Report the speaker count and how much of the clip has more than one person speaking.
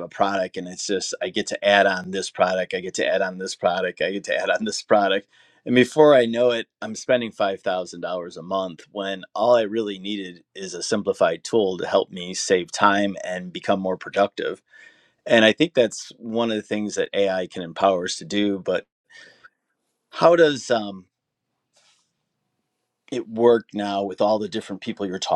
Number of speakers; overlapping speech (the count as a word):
one, no overlap